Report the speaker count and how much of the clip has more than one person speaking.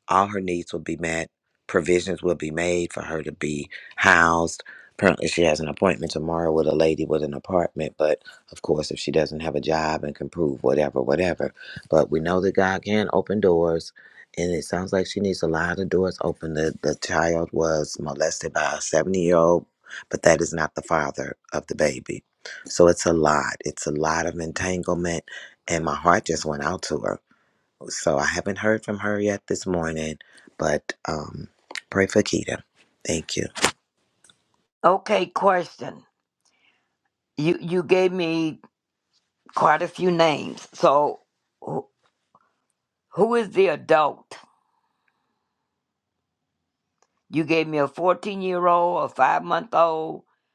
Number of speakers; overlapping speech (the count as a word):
two, no overlap